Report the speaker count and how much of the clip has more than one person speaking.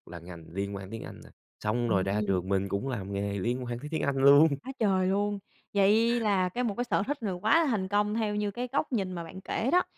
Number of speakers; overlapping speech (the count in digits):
2, about 5%